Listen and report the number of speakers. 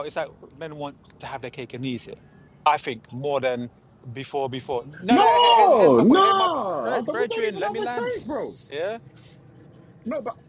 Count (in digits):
2